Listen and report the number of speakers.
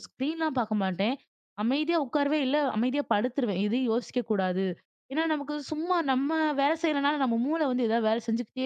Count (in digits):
1